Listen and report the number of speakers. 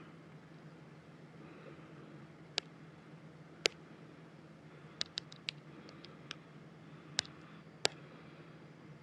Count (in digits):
0